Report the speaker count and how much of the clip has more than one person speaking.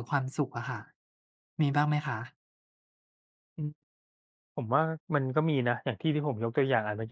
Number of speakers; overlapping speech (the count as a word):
two, no overlap